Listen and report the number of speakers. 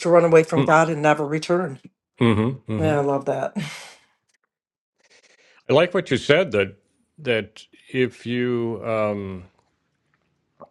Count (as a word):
two